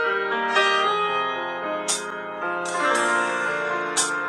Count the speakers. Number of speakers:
0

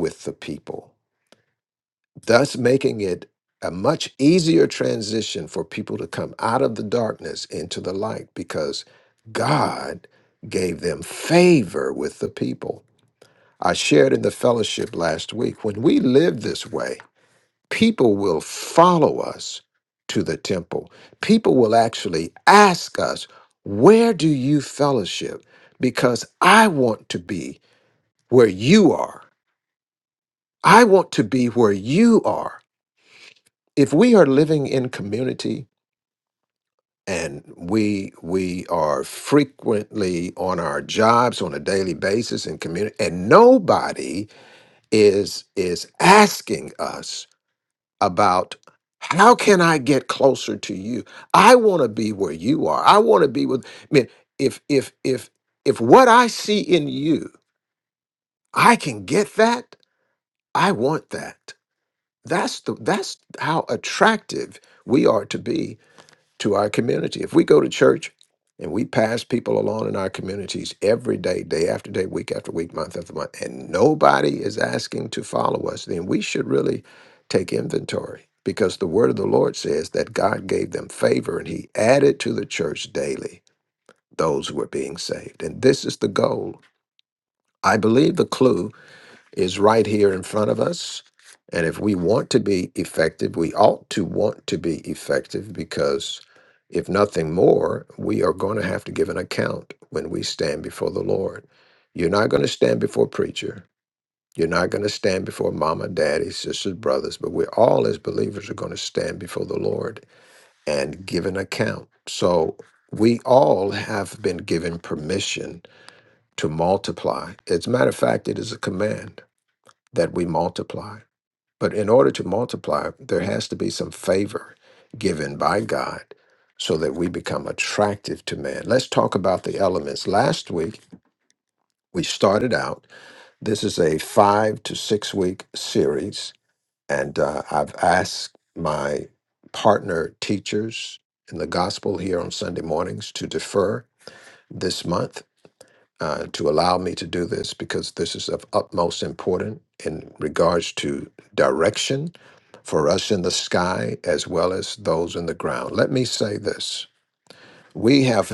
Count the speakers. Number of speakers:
1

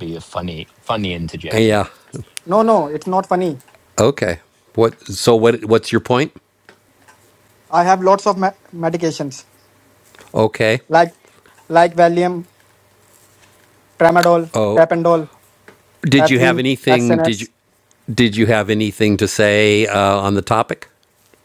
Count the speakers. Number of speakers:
3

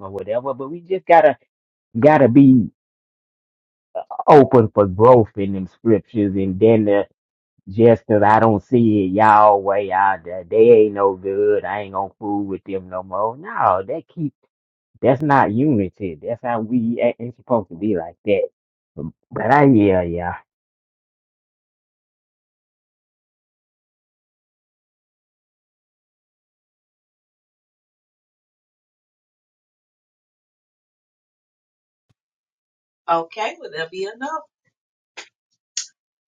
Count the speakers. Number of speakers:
2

